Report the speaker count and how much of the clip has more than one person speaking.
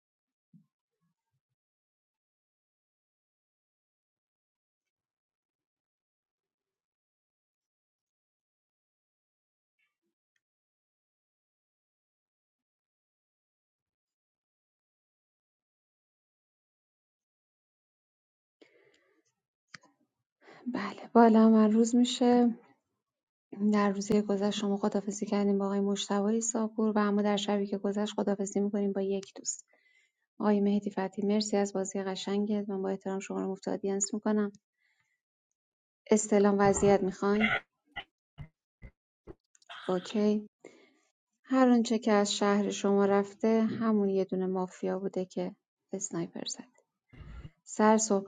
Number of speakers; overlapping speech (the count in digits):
1, no overlap